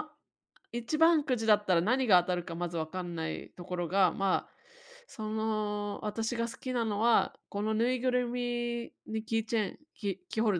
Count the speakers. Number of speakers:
one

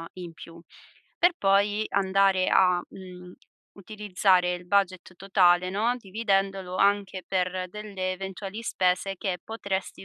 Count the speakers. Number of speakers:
one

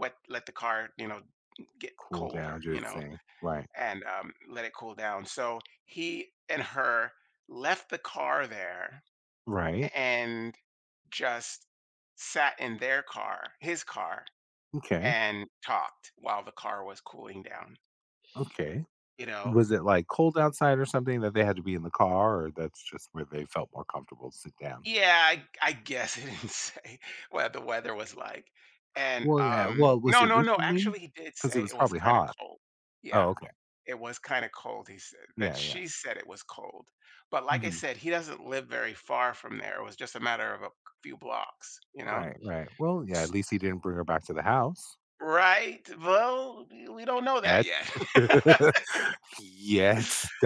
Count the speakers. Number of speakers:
two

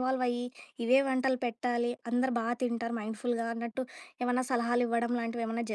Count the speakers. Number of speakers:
one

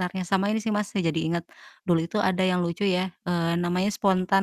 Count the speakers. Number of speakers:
one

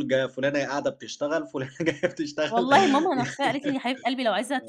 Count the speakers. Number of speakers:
two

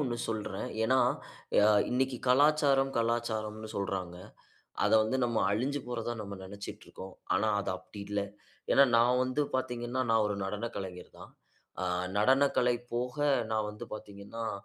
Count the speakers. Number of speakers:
one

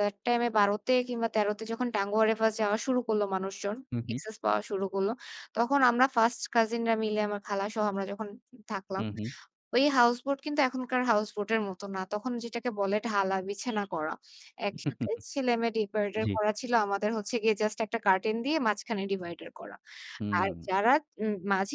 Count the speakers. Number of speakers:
two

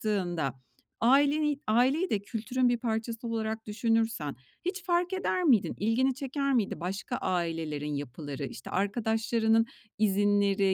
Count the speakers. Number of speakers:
one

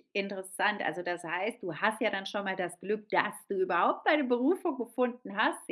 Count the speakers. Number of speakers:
one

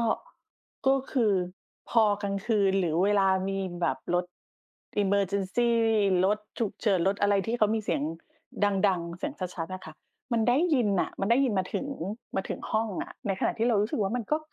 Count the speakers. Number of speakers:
one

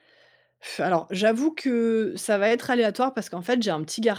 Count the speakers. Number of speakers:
one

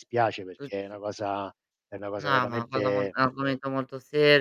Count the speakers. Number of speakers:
two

